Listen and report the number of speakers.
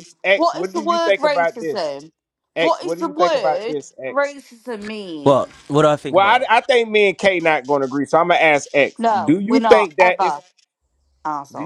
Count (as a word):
three